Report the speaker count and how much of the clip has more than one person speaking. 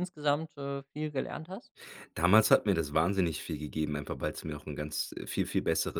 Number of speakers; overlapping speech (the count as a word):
two, no overlap